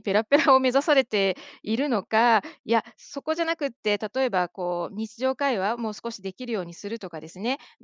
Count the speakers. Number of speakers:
one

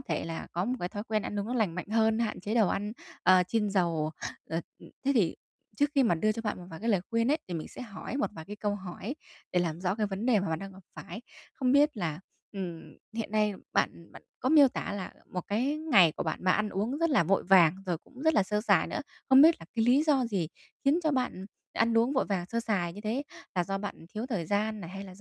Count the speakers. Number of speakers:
one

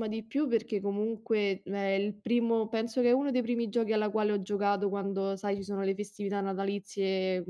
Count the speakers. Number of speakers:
one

